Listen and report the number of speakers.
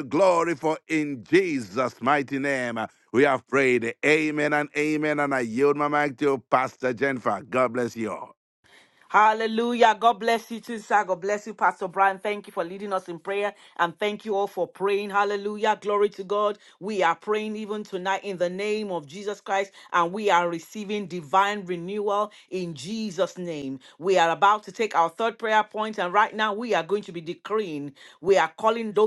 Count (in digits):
2